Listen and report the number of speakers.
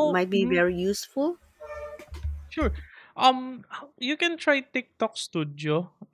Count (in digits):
2